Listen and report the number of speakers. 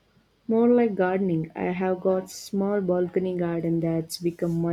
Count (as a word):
one